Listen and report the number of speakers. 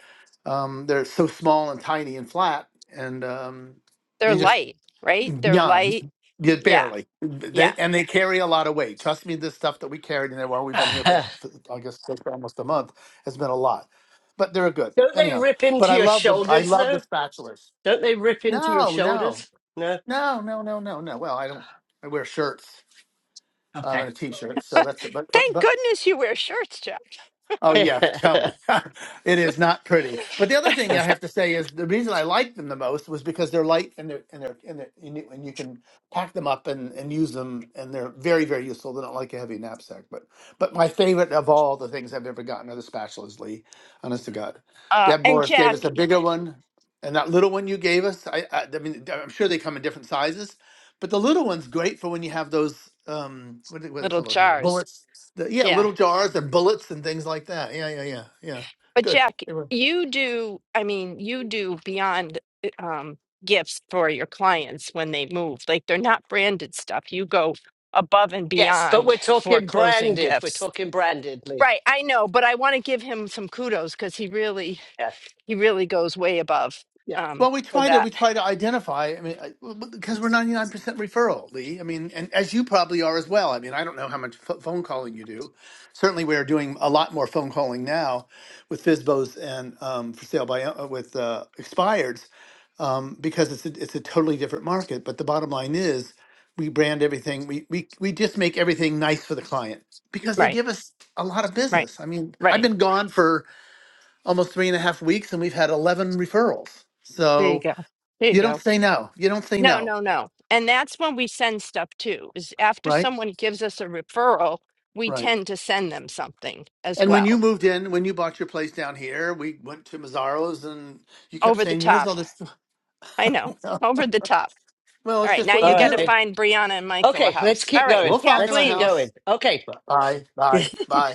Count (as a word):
three